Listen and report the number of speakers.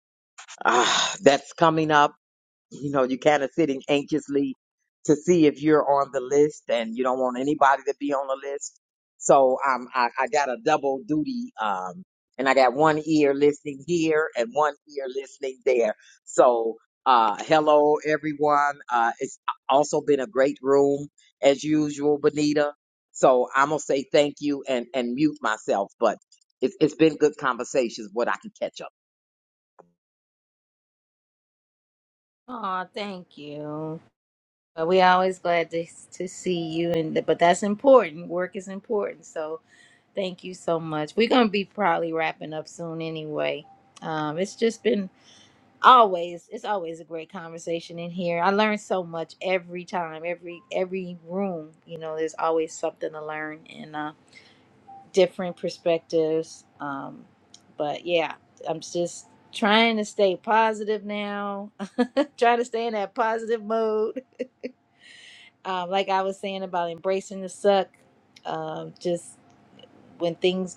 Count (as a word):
two